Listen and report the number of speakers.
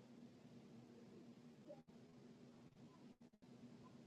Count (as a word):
zero